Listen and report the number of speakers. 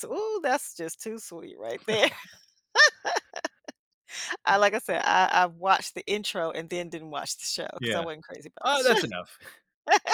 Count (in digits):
2